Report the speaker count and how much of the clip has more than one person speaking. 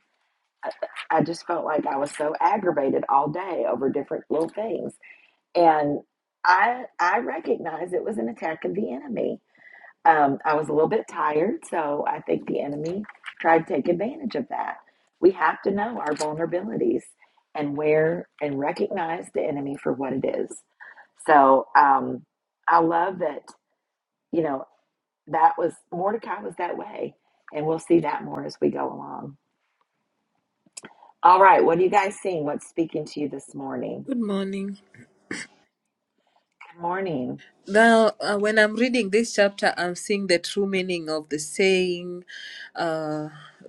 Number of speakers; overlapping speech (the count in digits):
2, no overlap